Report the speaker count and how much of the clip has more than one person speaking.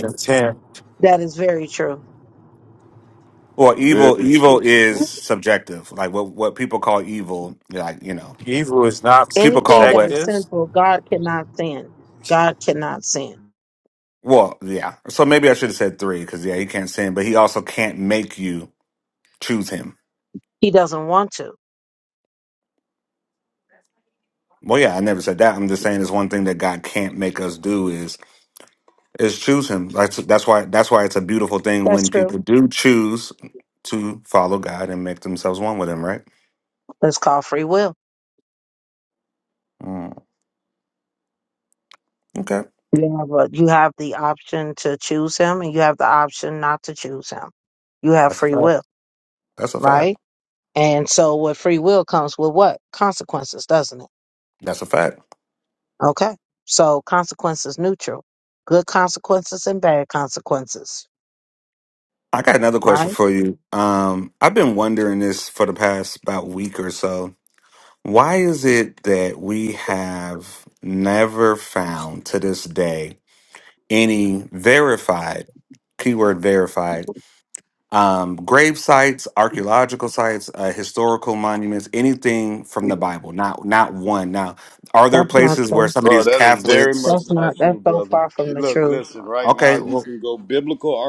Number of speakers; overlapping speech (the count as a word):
four, about 8%